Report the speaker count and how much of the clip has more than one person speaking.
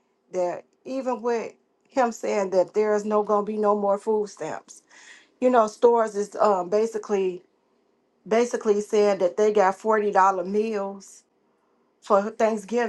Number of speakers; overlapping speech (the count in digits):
1, no overlap